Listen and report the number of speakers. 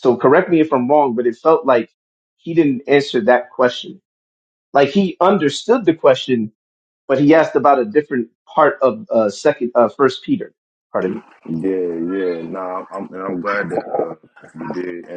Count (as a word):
two